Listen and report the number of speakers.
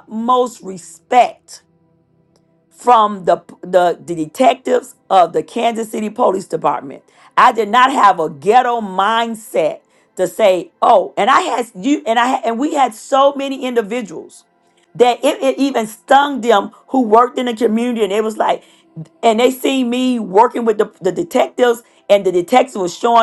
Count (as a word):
one